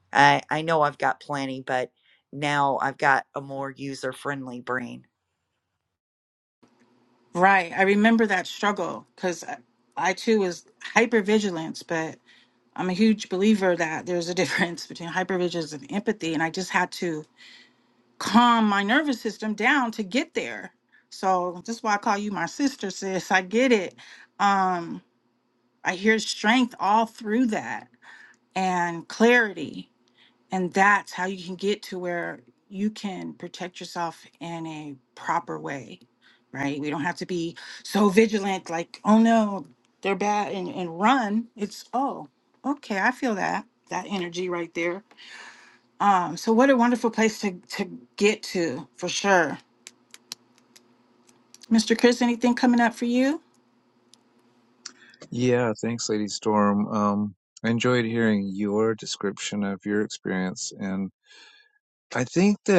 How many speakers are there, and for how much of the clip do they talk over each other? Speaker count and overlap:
3, no overlap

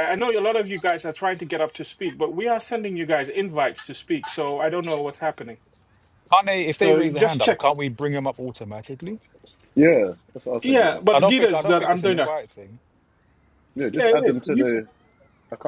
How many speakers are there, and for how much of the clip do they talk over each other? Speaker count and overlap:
3, about 21%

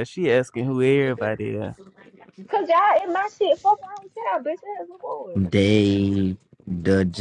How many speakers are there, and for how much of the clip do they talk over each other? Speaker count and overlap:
3, no overlap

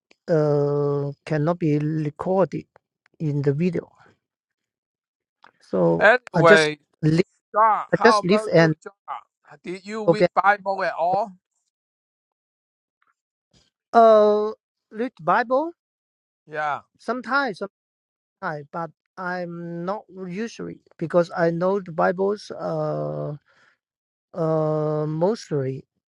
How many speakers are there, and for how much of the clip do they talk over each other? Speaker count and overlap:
2, about 7%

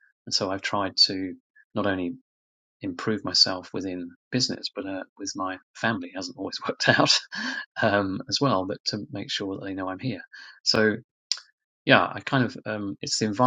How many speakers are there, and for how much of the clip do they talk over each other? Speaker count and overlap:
1, no overlap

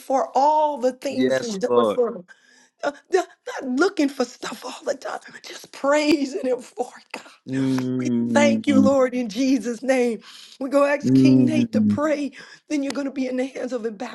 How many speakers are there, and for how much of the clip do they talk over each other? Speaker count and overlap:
2, about 20%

